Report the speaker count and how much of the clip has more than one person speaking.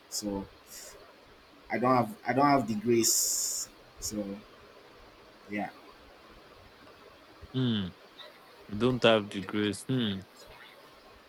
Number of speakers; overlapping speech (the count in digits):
2, no overlap